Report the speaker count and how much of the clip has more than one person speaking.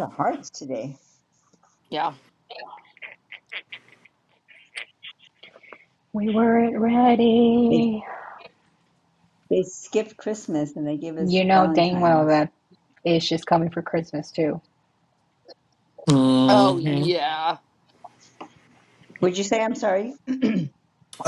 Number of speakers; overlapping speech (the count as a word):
four, about 9%